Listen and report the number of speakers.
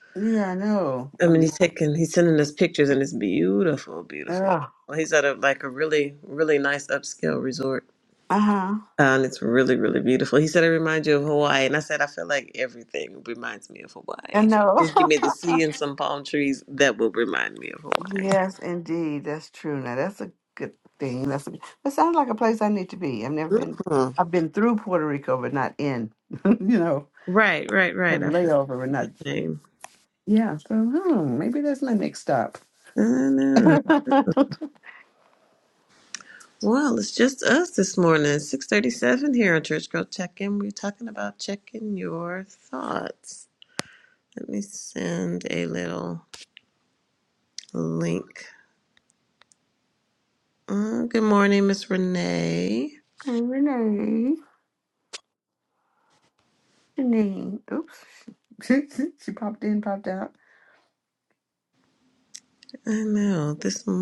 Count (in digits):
2